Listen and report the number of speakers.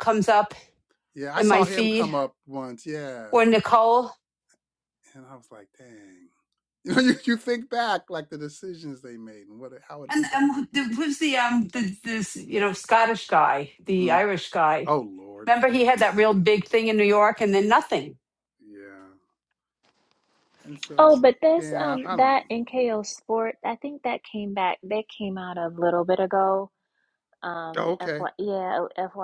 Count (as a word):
three